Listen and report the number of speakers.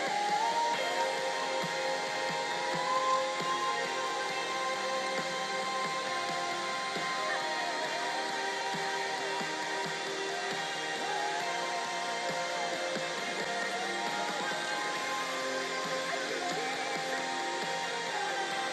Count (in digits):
0